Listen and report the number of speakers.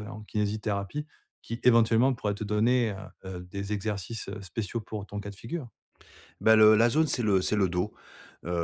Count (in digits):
2